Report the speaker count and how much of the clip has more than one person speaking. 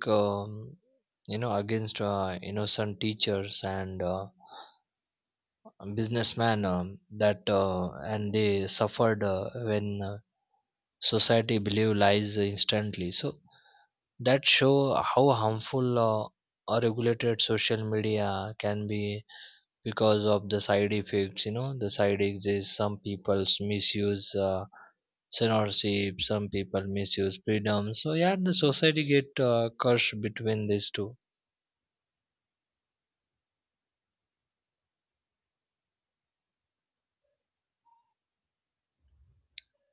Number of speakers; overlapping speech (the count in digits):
1, no overlap